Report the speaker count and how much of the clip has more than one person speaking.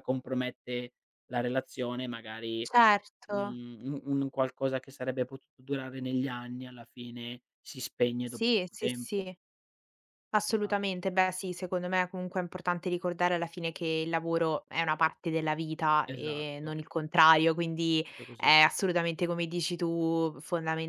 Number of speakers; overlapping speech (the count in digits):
2, about 8%